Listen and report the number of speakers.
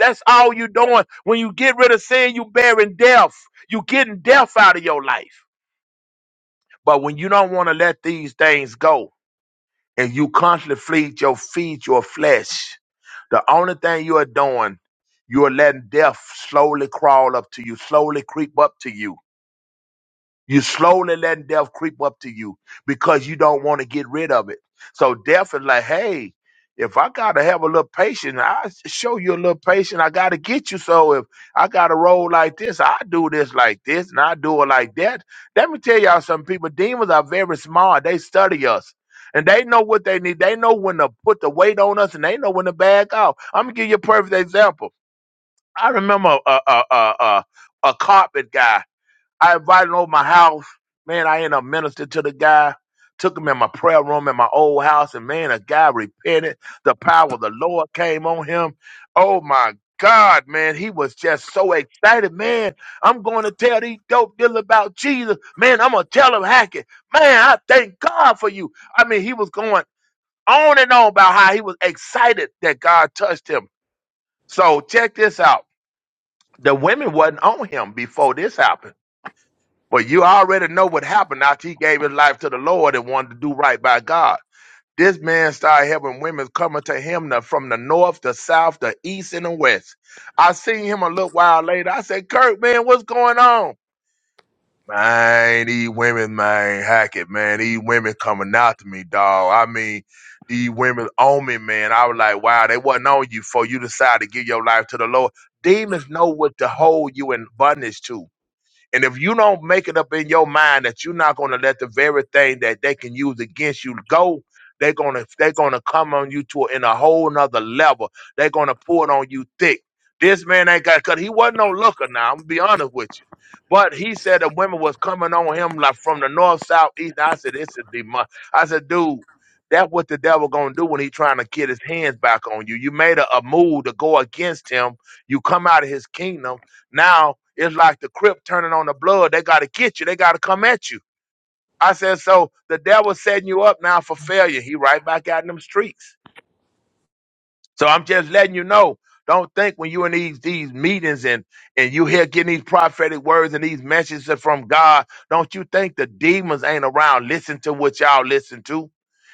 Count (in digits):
1